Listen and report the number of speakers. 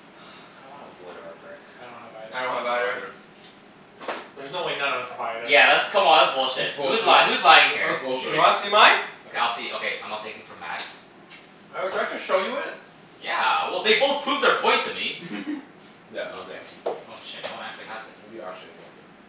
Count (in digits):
4